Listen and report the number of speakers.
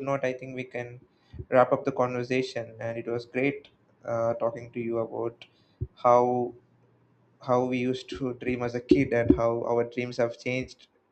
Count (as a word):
one